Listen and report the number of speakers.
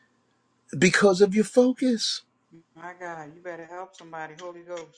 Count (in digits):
2